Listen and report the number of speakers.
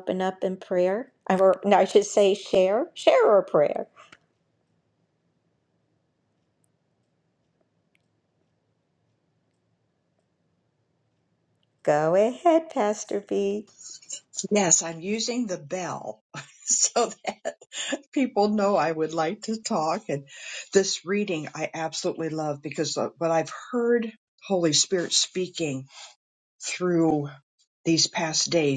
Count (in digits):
2